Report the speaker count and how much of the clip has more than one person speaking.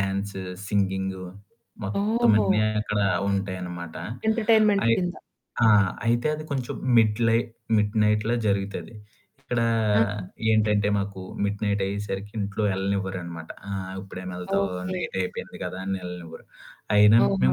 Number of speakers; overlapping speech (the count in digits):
2, about 10%